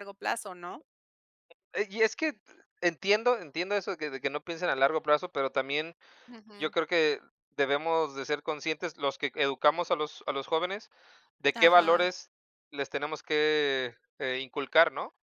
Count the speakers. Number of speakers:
2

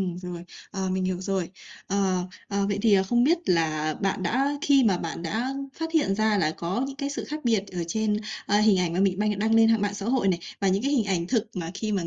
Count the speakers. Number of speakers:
1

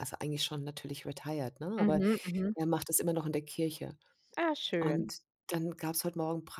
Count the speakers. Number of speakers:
2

